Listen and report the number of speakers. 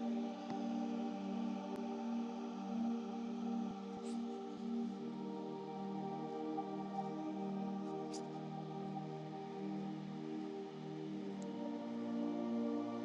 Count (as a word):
zero